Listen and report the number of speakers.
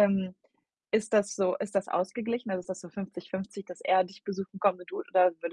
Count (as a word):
one